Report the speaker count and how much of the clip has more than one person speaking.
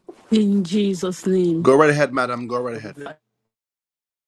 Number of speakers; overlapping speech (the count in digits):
2, about 1%